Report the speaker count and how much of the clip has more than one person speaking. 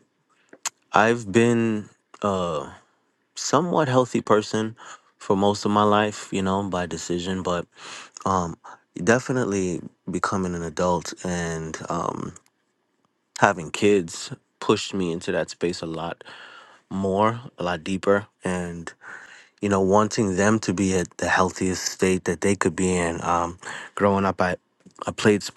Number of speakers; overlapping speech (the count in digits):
1, no overlap